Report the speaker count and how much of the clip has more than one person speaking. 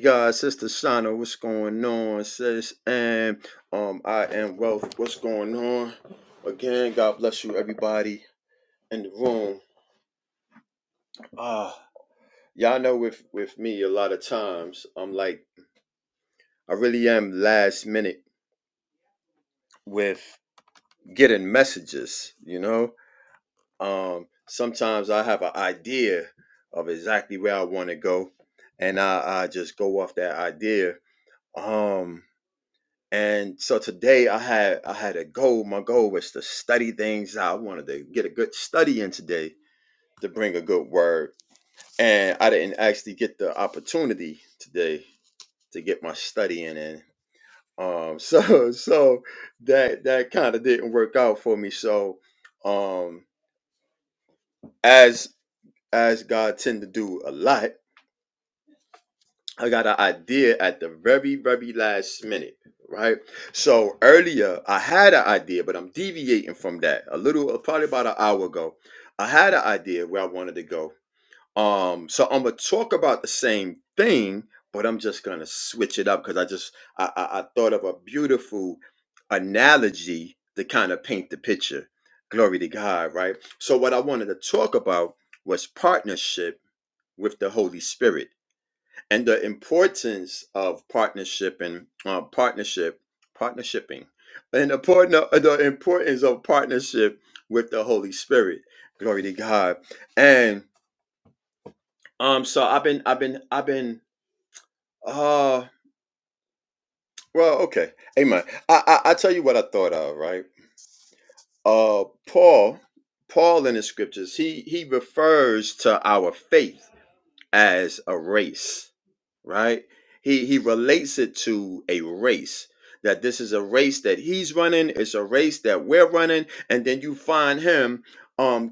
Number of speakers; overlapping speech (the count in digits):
1, no overlap